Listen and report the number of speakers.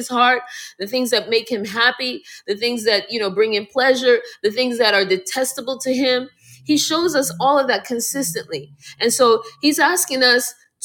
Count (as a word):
one